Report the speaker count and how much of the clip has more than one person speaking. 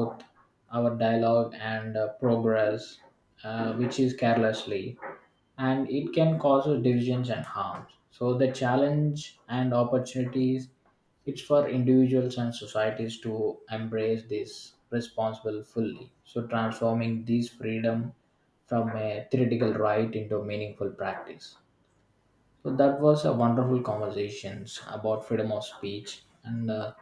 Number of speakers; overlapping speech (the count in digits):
1, no overlap